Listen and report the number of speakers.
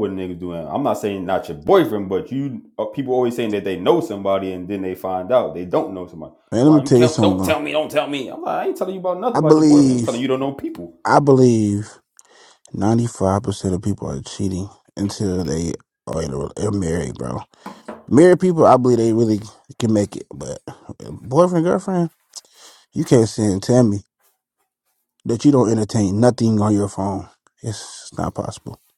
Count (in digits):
2